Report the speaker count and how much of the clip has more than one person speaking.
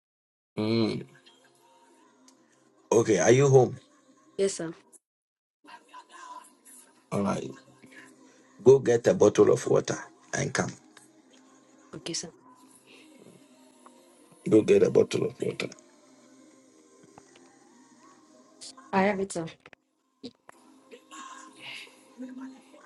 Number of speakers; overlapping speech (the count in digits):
2, no overlap